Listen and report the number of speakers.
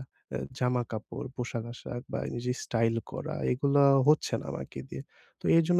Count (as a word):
one